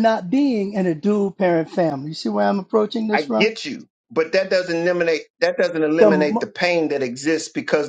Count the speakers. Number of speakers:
2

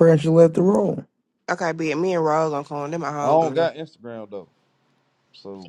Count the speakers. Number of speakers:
3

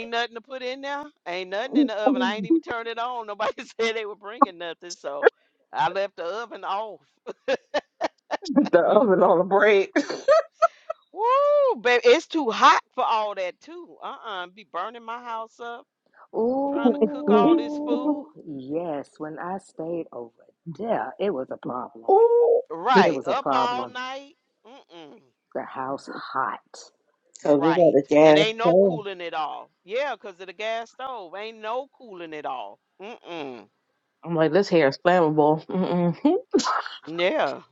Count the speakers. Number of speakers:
4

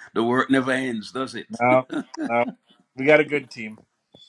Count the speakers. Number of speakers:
2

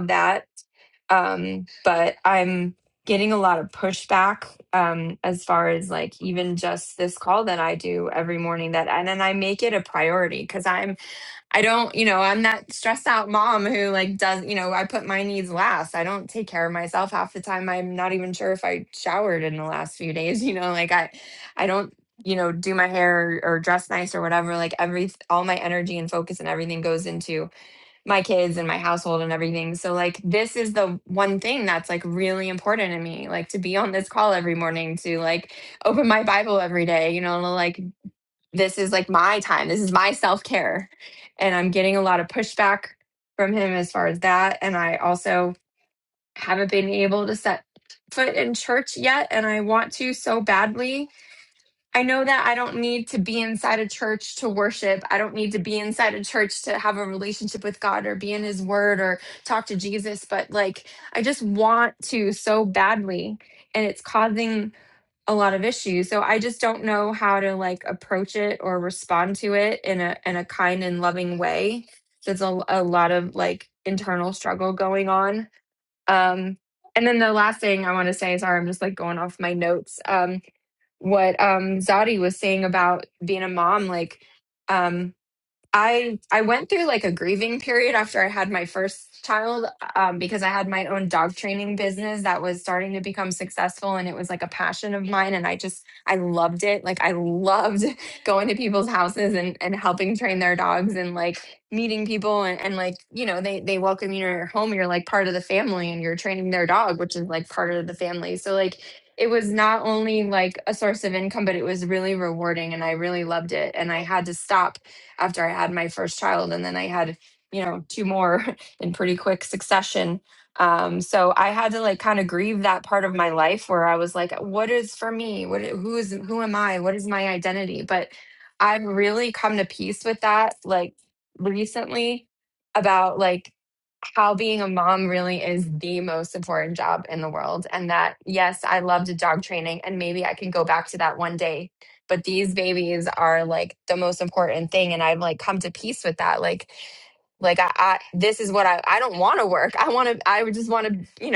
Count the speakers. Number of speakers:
1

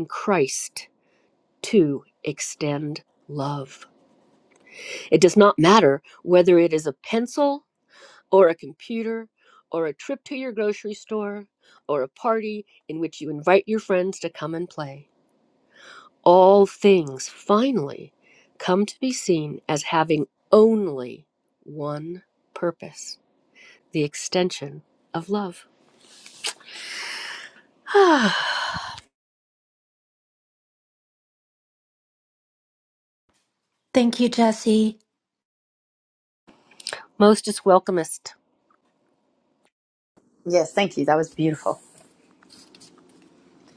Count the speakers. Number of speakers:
3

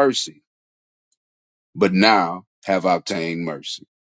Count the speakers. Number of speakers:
1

